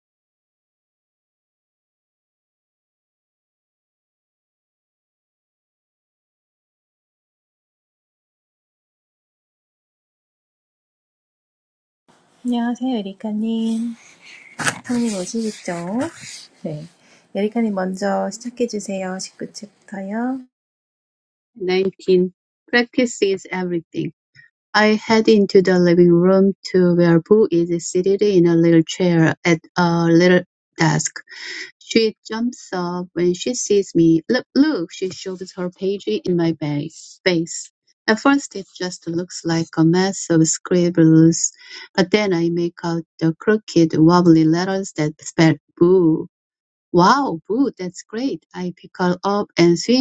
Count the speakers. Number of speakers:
2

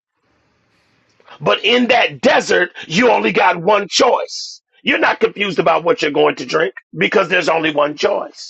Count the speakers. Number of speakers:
1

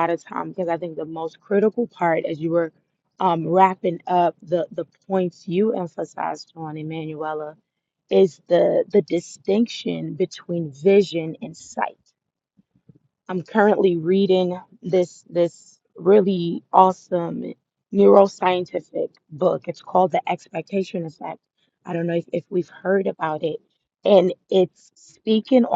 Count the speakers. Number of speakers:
1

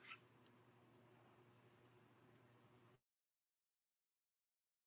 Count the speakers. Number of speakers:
0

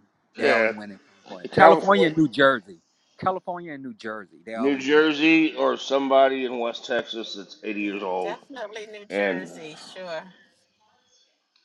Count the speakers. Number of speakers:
3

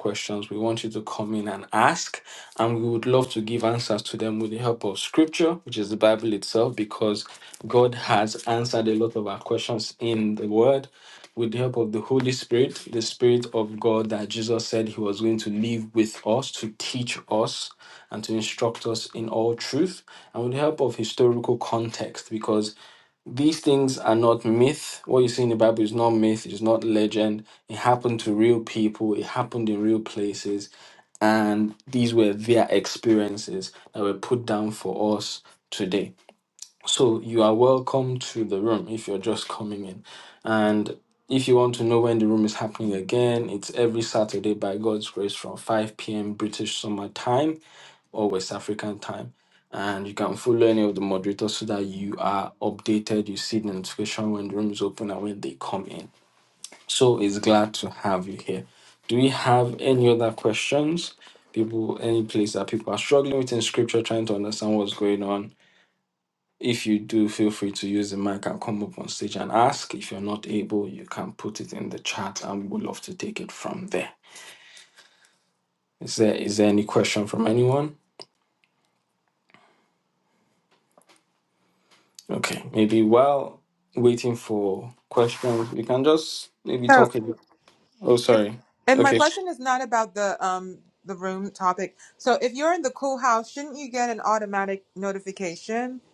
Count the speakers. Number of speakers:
2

